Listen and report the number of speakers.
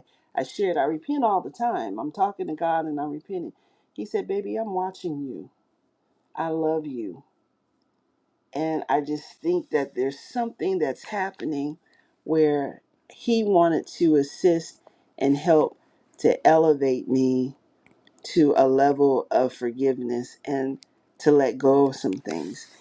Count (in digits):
1